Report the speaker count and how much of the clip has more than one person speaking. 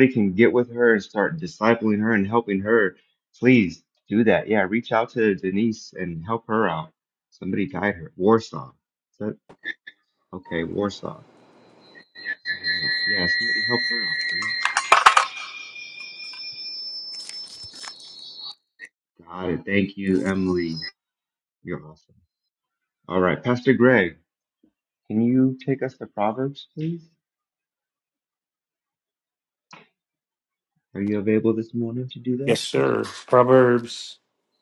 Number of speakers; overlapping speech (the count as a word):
two, under 1%